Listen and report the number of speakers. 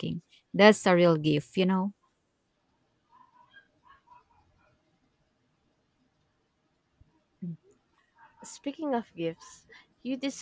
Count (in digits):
2